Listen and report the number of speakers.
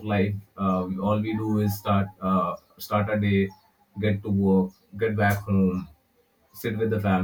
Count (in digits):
1